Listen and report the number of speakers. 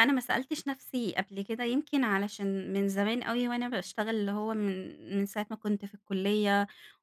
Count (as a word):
one